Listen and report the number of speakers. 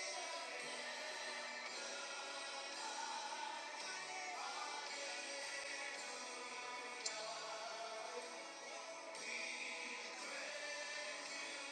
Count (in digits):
0